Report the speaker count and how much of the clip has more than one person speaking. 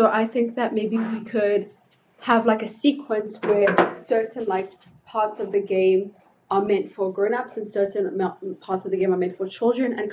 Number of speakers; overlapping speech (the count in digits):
1, no overlap